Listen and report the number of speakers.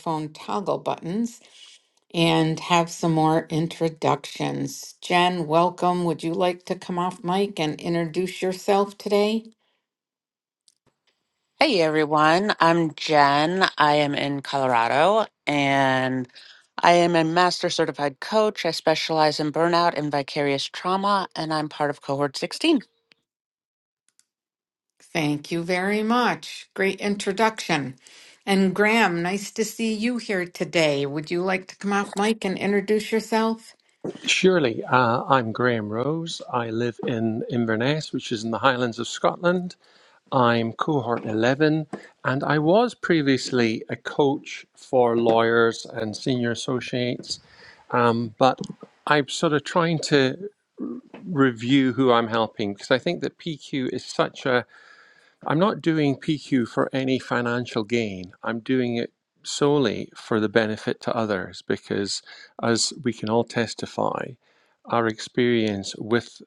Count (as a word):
three